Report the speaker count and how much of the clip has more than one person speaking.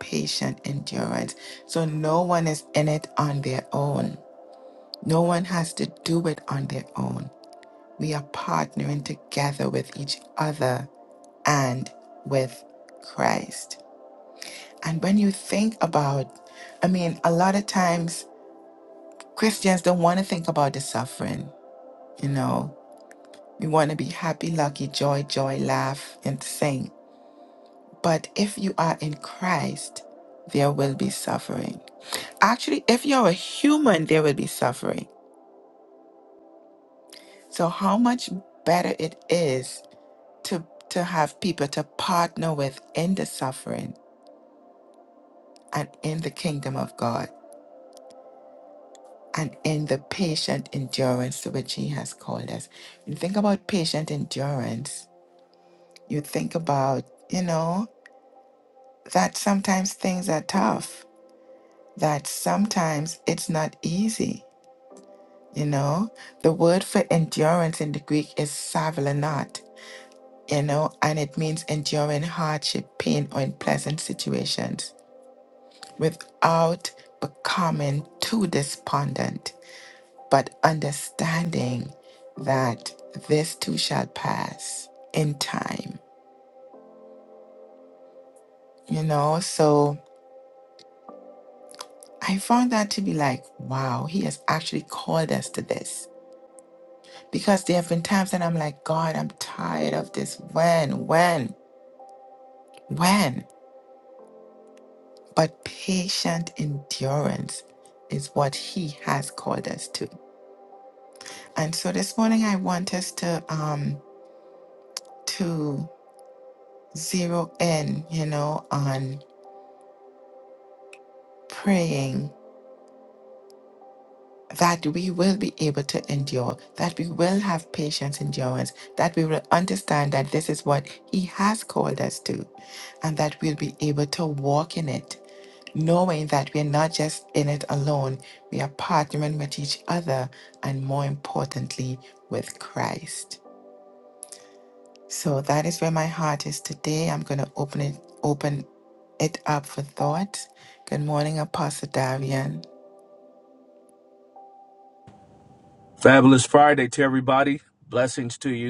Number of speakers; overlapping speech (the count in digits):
2, no overlap